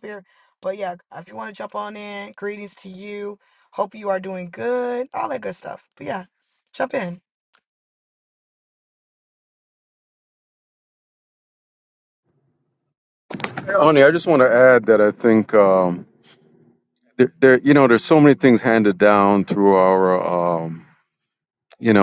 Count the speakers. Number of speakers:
2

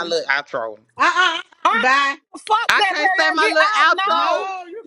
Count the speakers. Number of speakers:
3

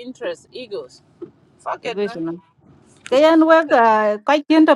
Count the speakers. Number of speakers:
2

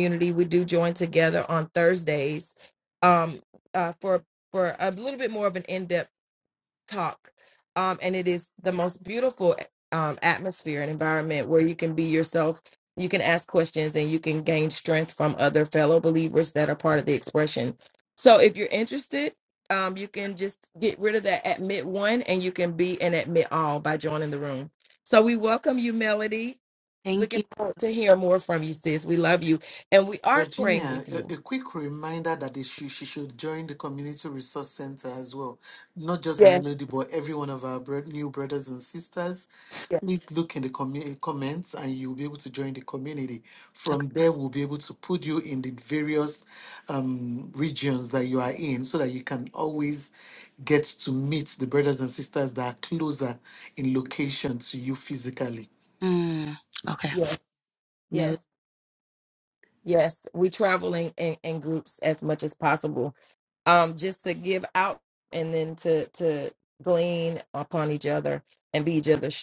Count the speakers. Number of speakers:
3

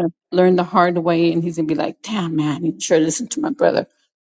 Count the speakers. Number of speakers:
1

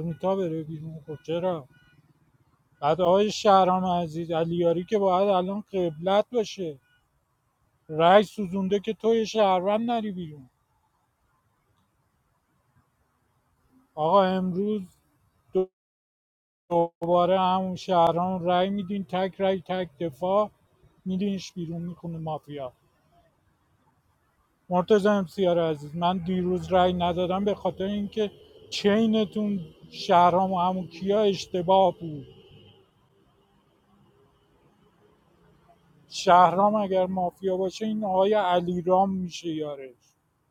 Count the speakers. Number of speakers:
1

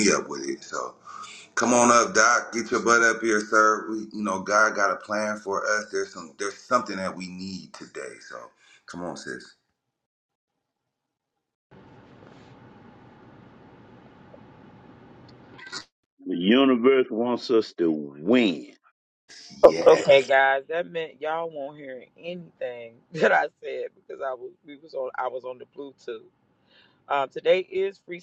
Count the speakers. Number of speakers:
3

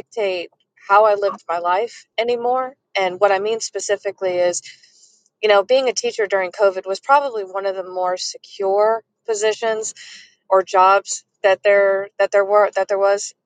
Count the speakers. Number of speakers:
1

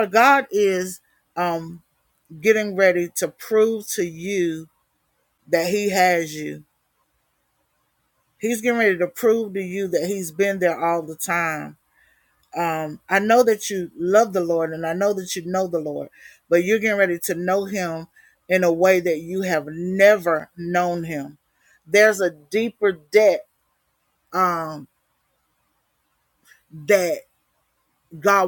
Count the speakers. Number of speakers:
1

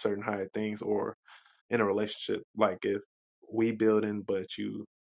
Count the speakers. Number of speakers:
1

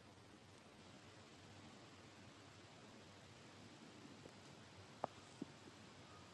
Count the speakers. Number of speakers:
0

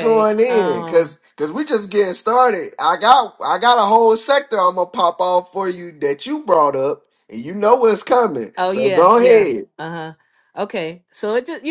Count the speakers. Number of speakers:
2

